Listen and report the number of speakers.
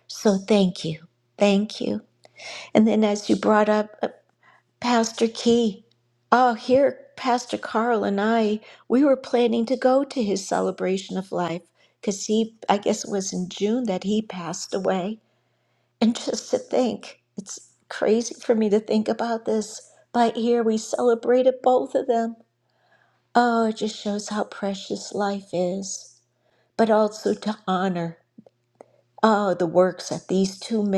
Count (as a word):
one